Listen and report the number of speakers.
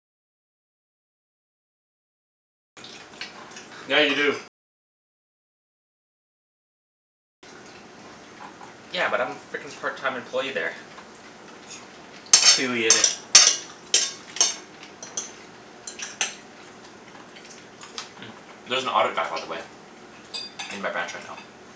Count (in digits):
2